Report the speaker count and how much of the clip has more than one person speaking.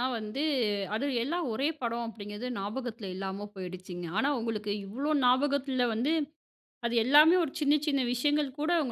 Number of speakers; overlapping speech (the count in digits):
1, no overlap